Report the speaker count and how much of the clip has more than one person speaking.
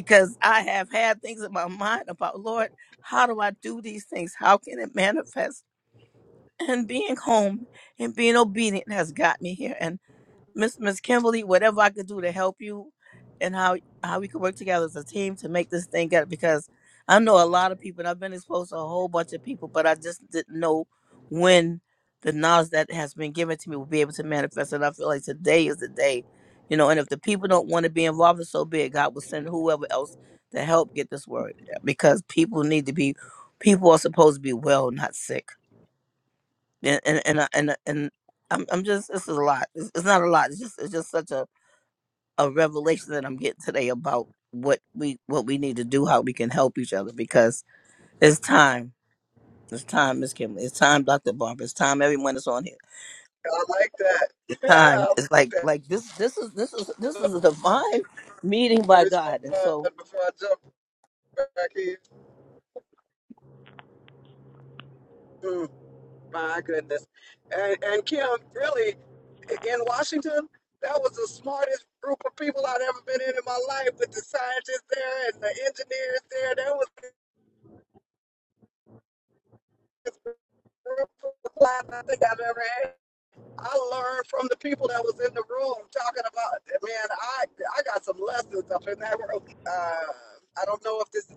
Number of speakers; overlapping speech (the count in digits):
2, about 2%